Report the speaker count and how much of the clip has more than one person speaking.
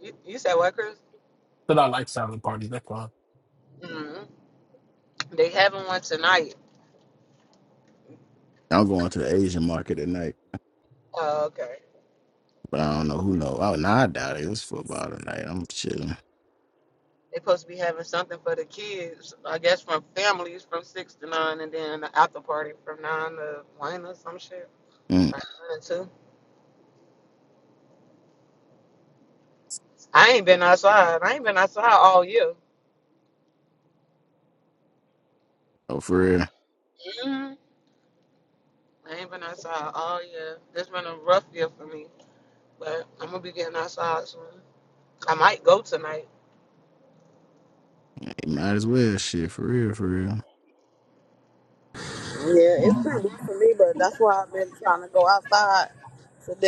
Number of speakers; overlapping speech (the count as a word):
four, under 1%